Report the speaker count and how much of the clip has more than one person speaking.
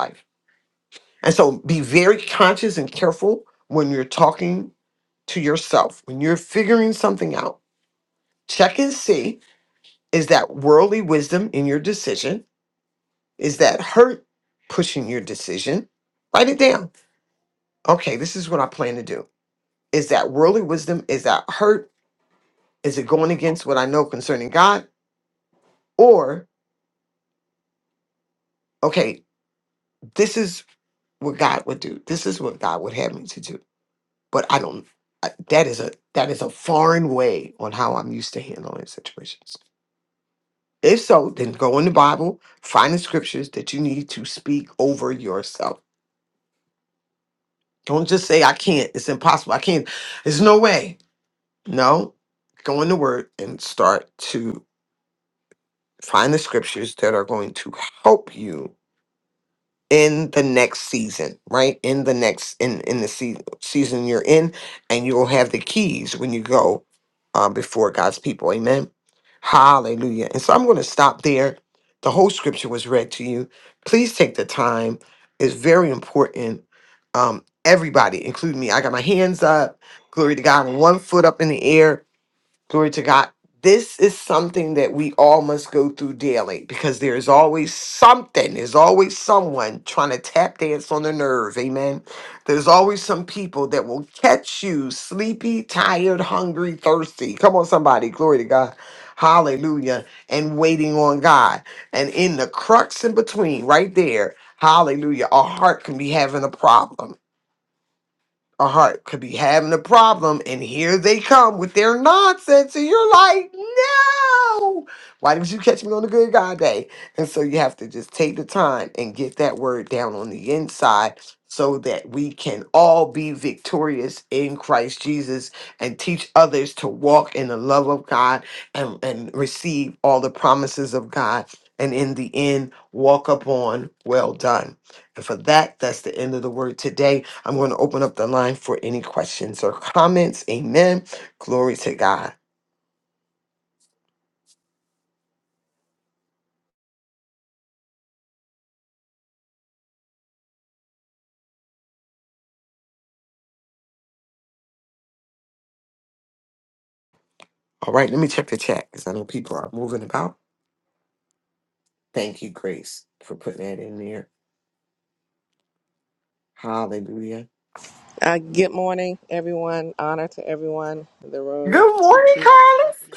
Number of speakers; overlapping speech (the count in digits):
2, under 1%